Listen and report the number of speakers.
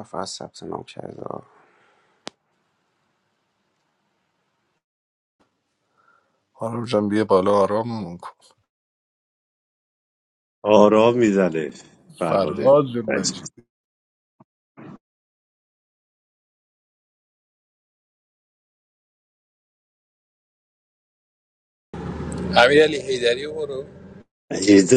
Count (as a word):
four